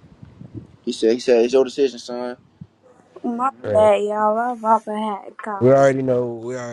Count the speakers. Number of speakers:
3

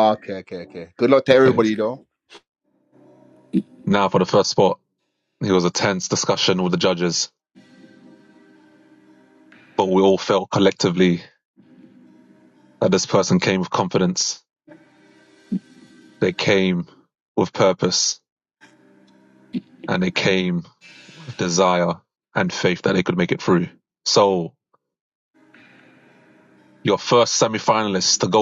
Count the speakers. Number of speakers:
2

